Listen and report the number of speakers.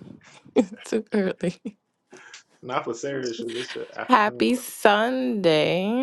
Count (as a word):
two